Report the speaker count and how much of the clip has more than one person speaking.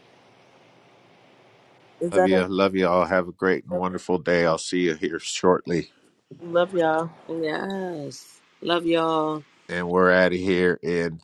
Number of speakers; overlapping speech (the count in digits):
3, about 3%